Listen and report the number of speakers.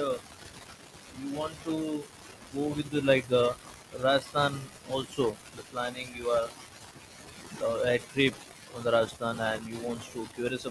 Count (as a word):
one